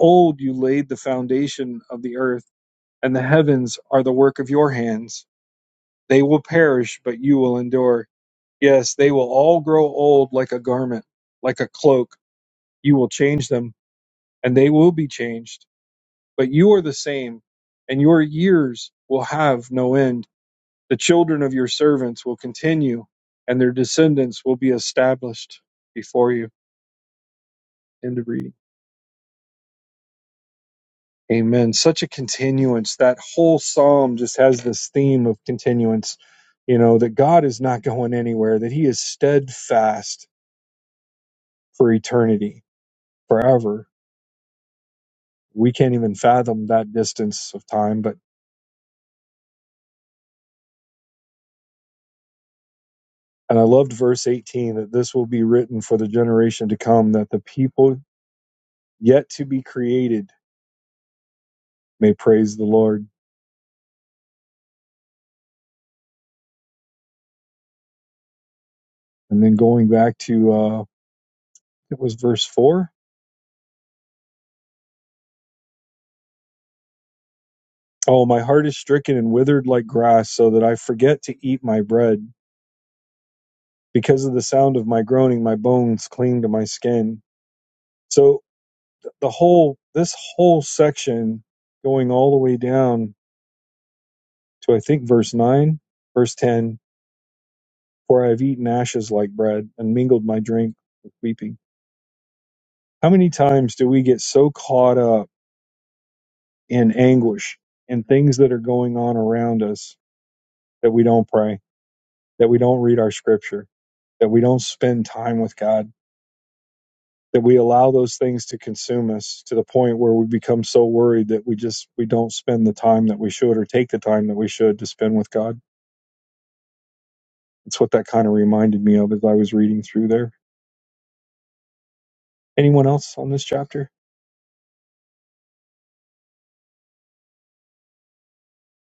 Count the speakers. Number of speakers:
1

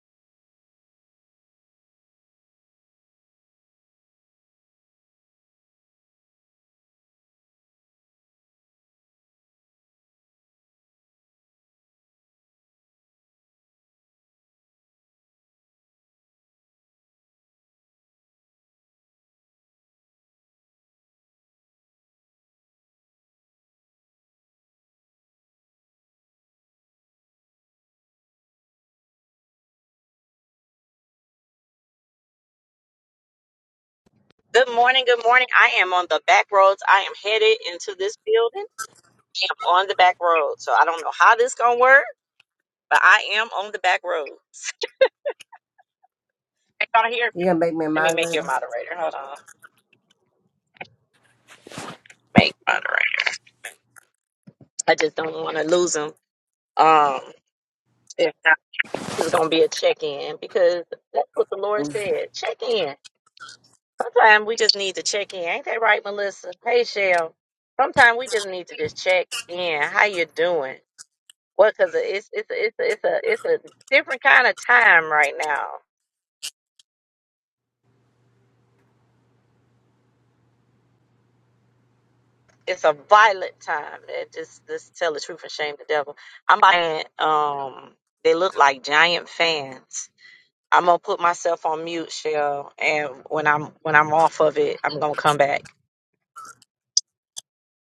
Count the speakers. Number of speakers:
2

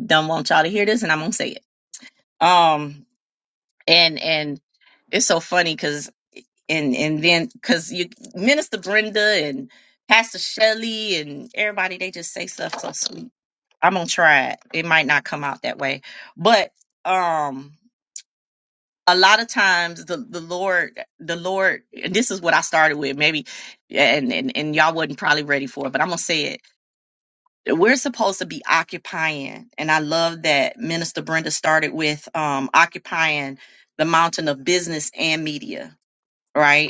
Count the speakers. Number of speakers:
1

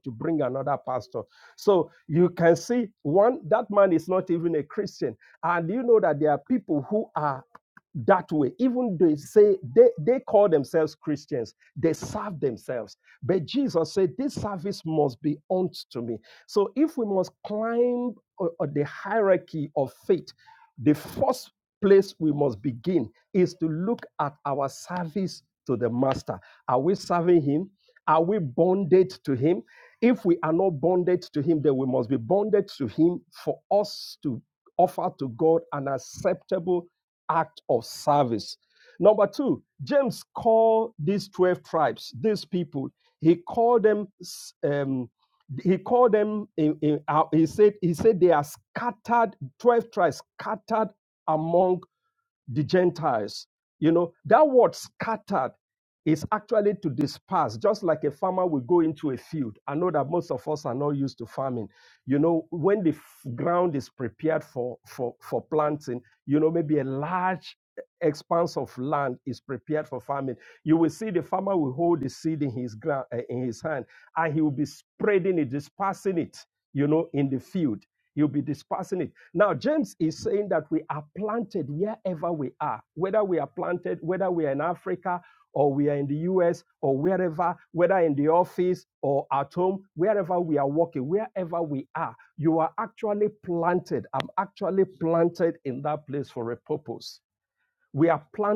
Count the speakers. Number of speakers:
1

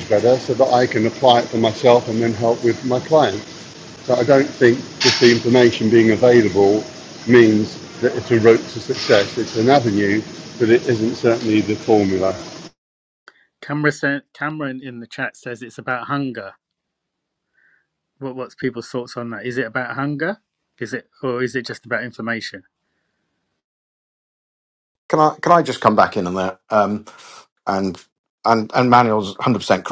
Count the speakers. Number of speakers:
3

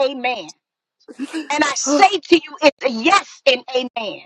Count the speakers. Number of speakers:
1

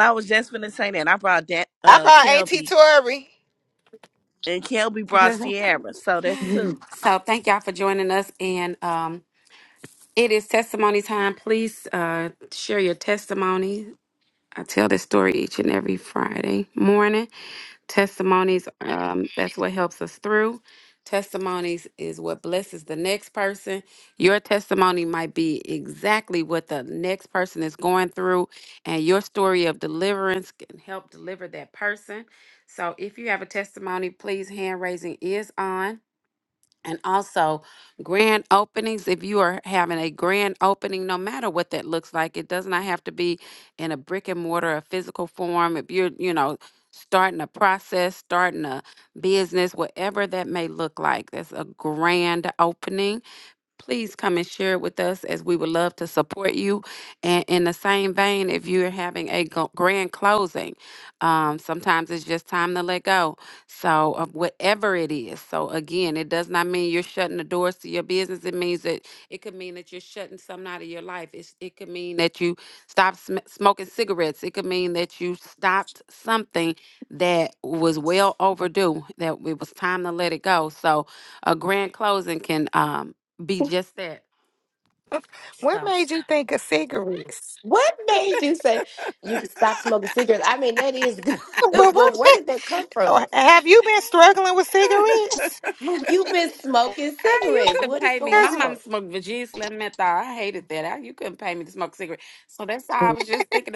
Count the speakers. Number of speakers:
4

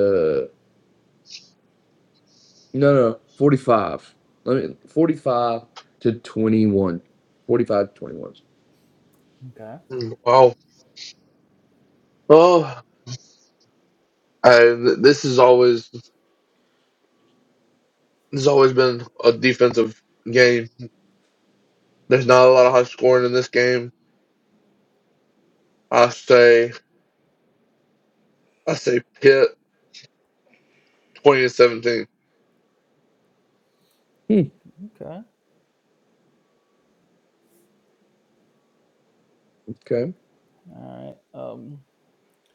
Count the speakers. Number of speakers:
3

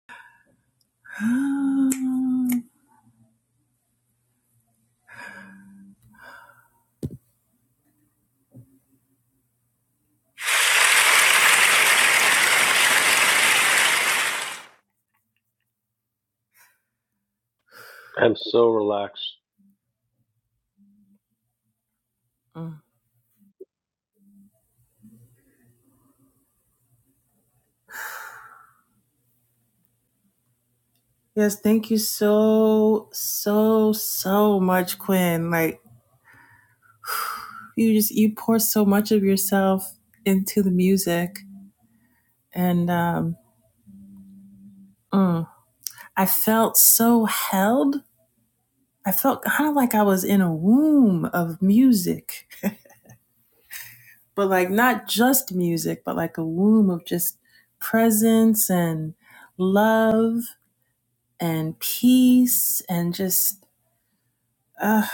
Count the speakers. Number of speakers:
2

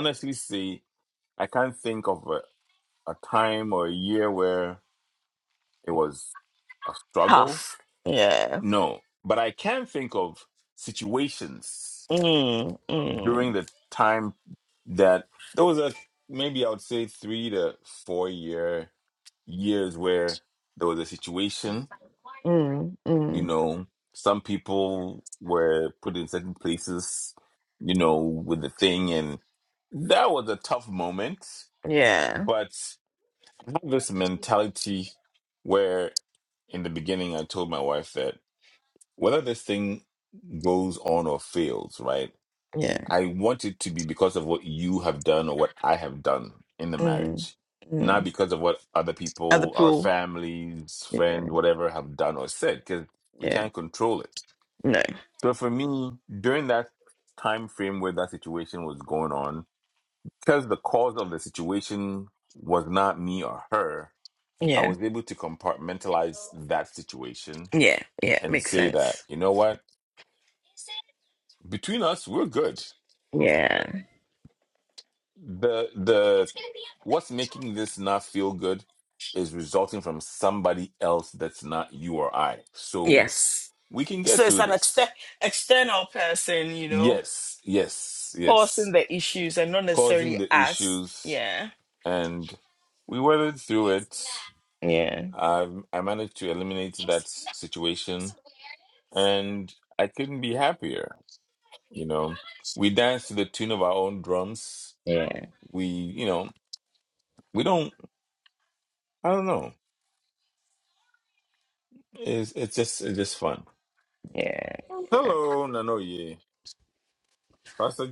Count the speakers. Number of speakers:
2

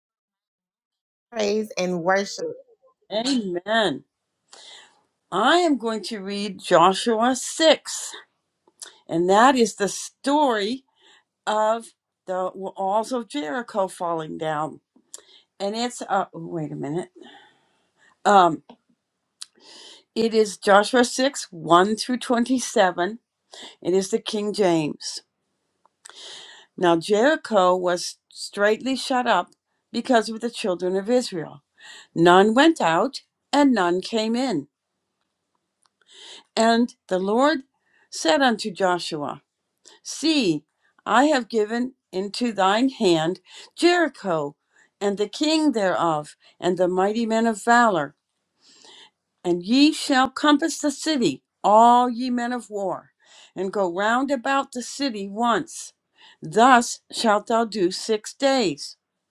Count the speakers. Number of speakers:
2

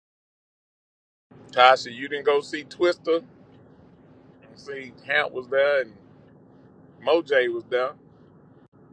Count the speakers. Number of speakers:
1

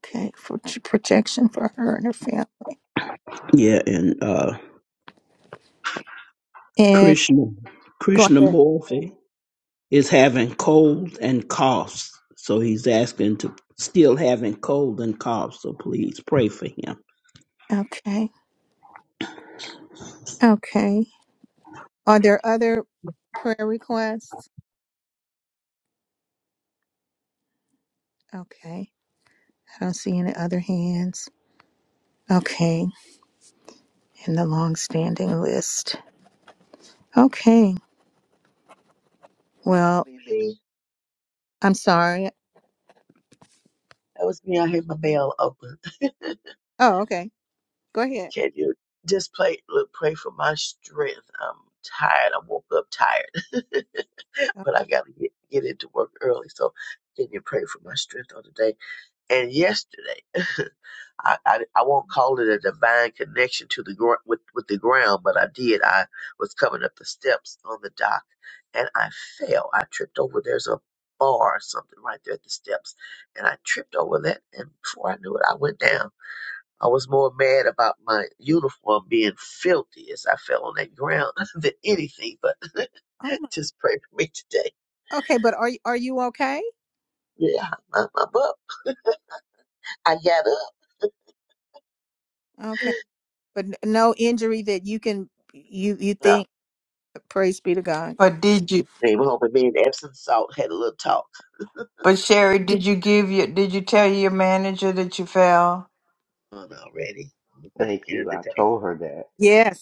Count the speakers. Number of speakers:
5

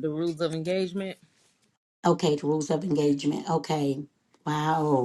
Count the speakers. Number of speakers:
2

